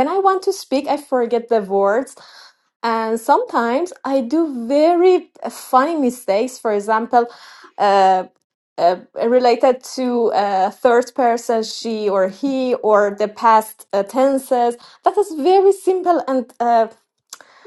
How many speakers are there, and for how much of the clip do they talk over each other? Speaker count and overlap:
one, no overlap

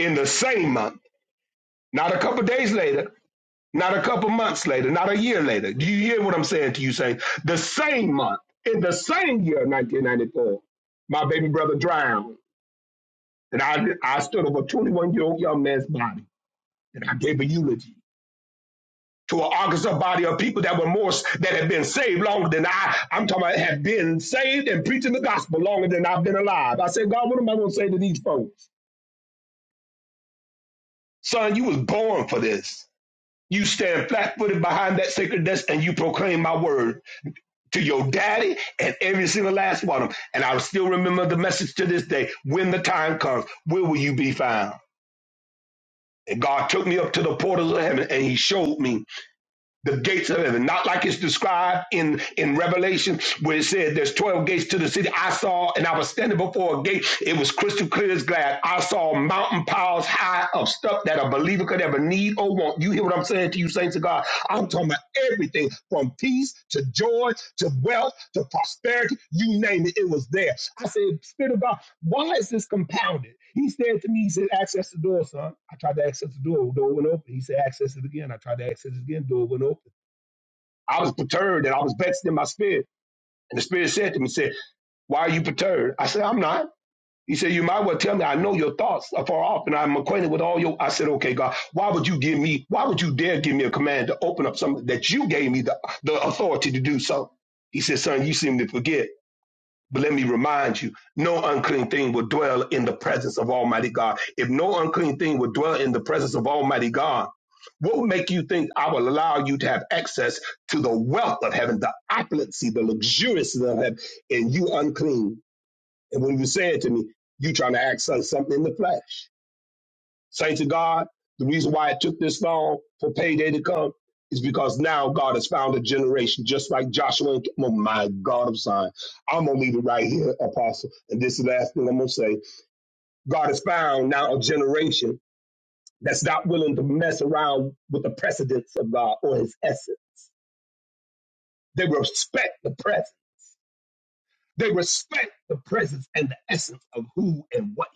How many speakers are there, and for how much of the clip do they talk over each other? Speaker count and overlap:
one, no overlap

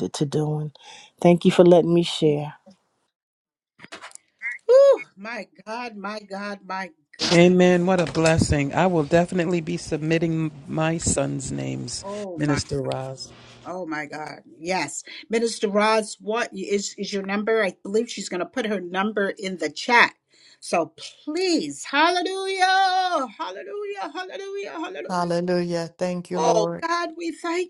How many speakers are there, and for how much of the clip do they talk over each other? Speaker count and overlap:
four, about 5%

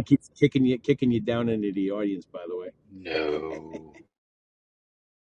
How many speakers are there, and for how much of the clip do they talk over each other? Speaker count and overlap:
two, under 1%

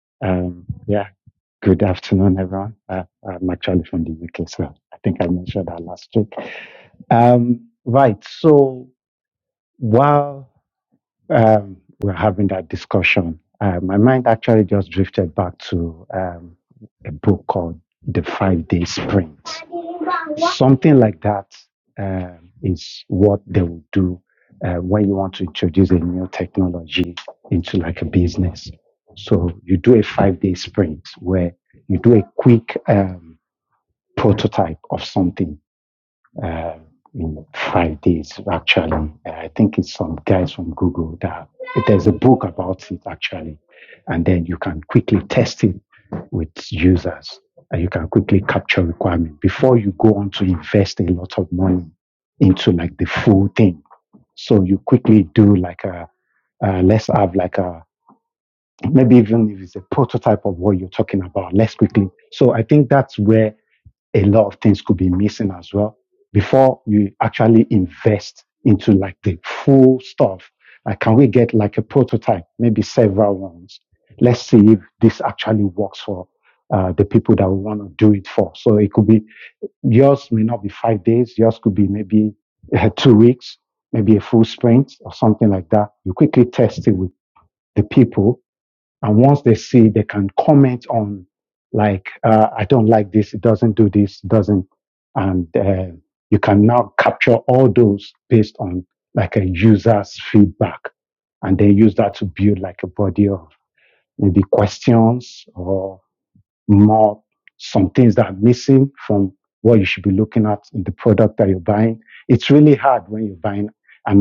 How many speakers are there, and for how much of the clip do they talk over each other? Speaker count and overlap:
one, no overlap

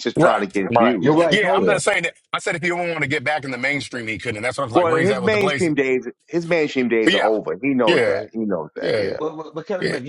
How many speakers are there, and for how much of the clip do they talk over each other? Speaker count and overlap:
three, about 38%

